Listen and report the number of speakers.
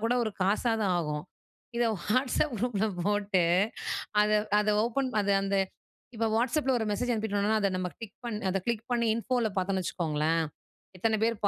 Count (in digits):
1